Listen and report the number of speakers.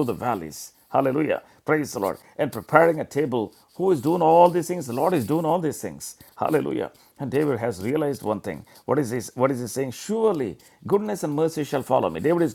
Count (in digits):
1